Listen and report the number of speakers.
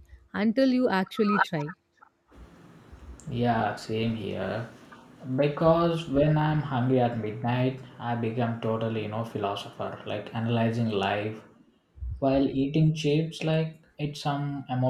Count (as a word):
two